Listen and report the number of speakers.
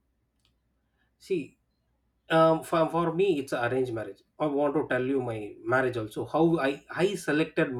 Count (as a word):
one